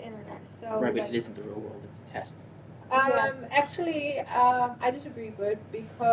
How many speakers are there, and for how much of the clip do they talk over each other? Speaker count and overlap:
3, about 11%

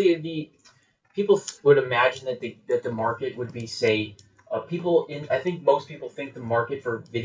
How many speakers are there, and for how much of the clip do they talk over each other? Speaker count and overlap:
1, no overlap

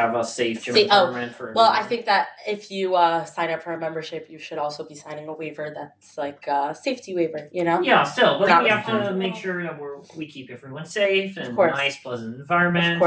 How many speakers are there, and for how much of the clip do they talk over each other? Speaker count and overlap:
2, about 23%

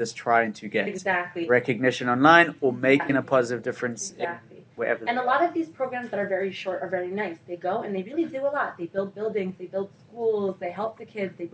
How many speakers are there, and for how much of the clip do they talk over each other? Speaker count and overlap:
2, about 22%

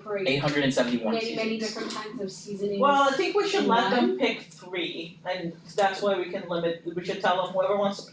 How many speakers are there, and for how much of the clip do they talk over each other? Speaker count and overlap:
3, about 28%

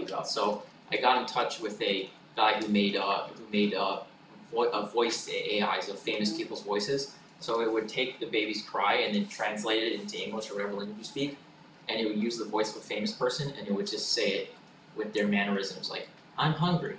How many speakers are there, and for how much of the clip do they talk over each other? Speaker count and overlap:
1, no overlap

